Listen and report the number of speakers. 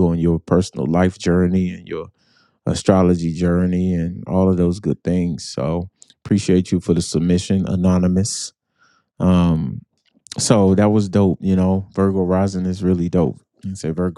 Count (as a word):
one